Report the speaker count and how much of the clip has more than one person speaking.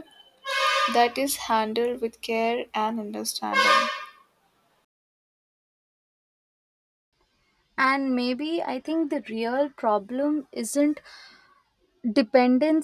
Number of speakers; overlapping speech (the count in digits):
2, no overlap